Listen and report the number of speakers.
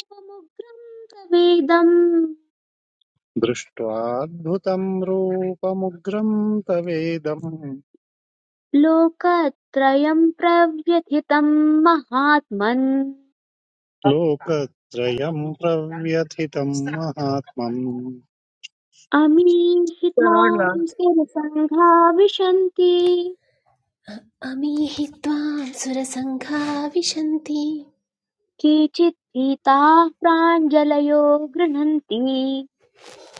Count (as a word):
three